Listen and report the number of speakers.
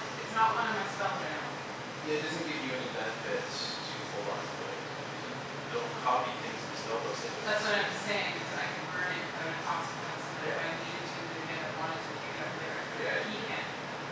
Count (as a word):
two